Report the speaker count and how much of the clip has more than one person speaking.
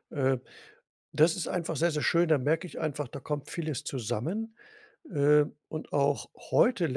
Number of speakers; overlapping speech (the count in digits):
1, no overlap